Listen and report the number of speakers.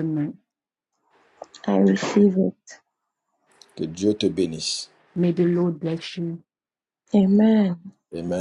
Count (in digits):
3